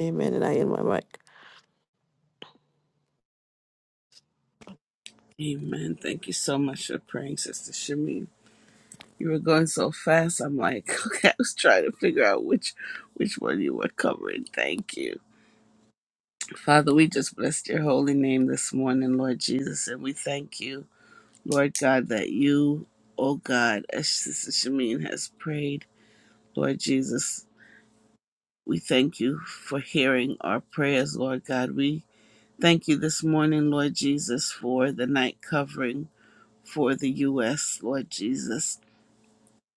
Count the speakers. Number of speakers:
2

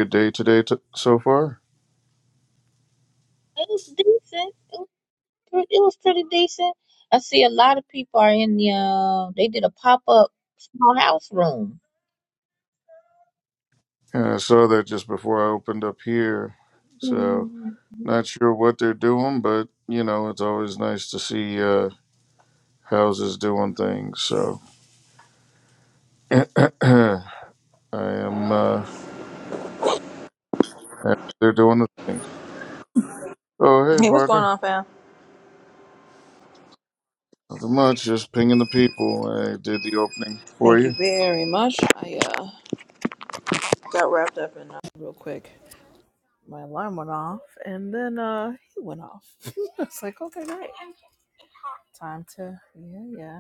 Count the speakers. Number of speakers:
3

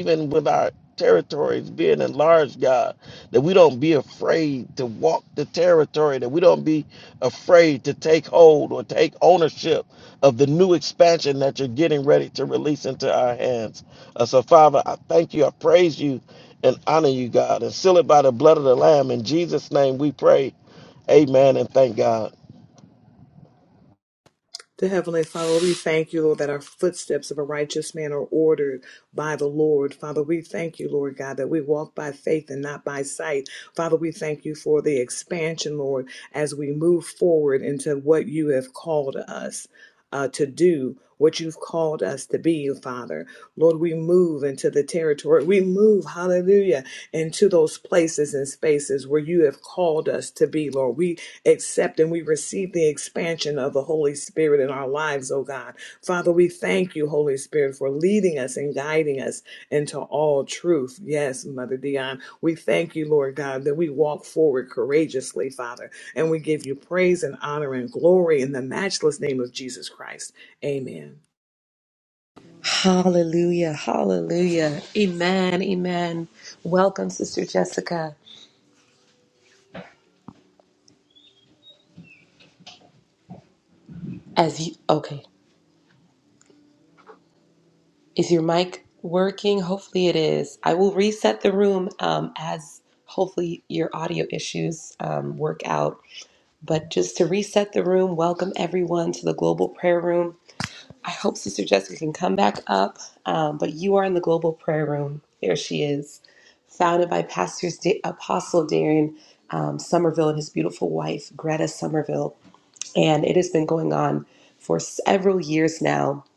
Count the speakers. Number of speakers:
3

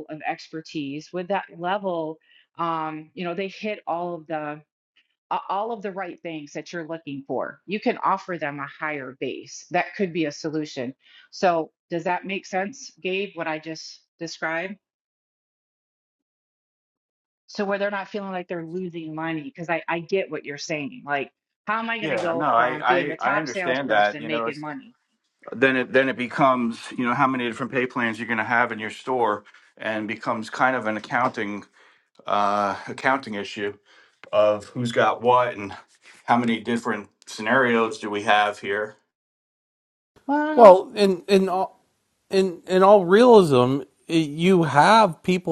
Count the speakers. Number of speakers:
3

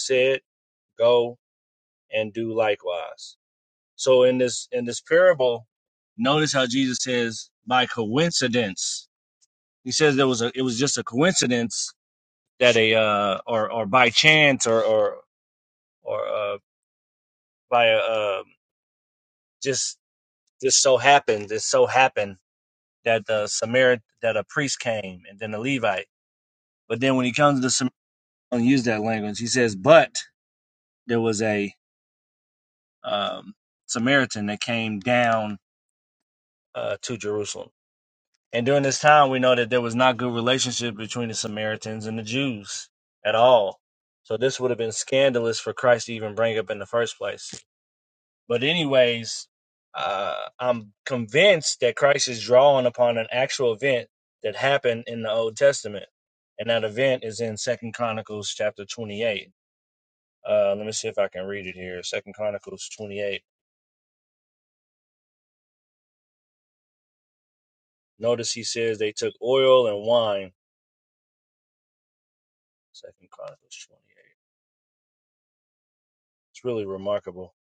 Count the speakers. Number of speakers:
1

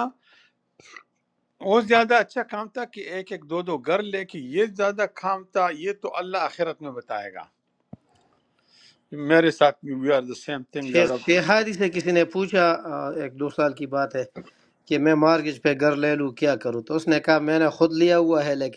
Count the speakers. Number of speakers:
2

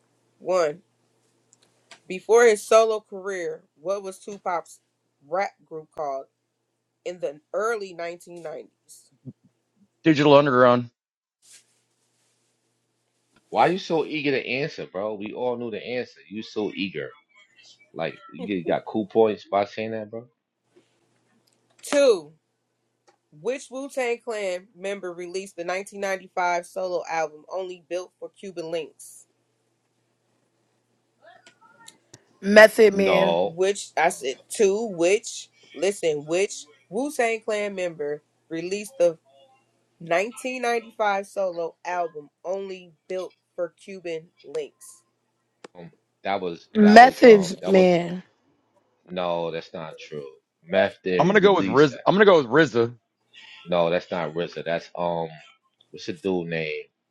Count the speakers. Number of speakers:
4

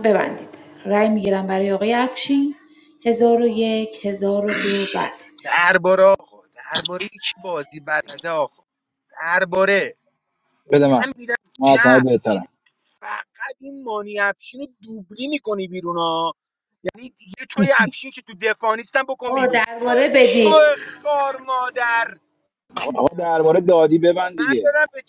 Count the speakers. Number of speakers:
3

